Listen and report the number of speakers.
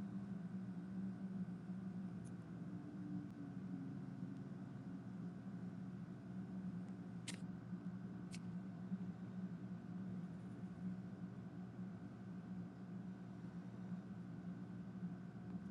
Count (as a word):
zero